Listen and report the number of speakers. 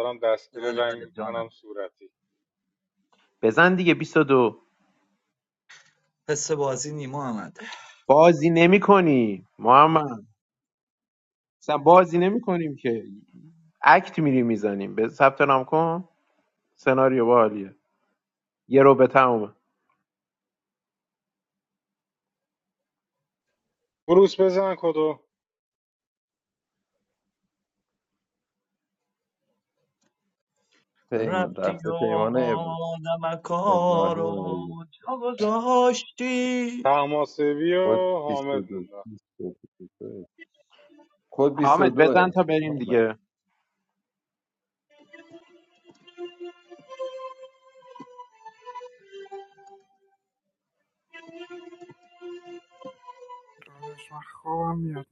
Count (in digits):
5